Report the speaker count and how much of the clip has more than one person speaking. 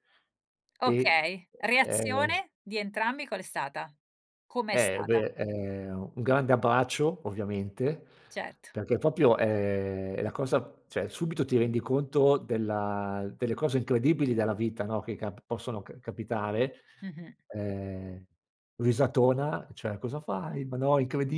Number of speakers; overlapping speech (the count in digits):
2, about 6%